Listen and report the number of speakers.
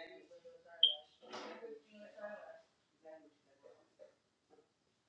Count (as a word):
zero